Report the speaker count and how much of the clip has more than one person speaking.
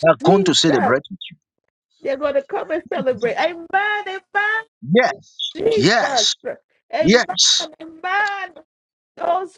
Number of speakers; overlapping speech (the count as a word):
two, about 11%